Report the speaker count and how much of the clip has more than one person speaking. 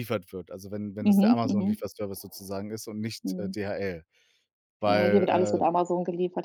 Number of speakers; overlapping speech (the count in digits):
2, about 28%